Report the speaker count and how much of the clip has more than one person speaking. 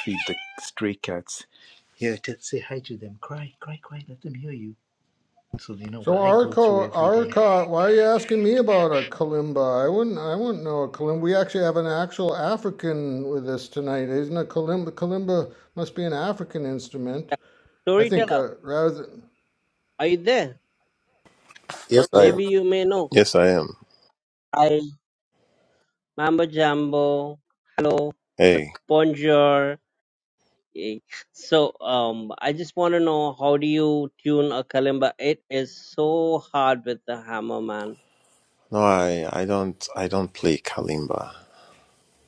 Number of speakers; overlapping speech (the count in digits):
4, about 5%